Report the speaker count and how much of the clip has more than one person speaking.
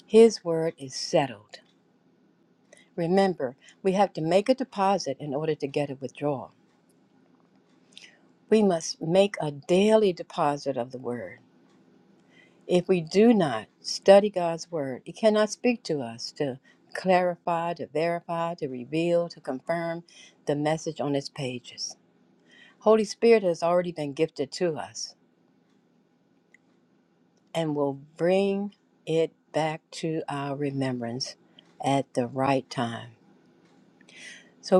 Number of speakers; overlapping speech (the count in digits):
1, no overlap